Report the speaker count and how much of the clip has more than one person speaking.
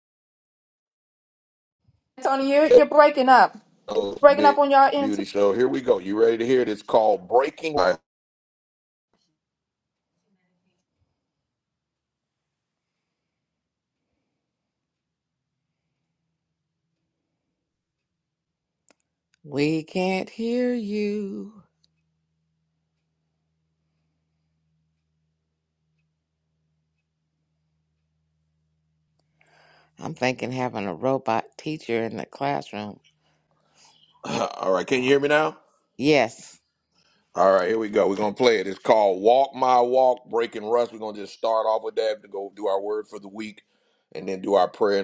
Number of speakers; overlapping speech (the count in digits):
3, about 1%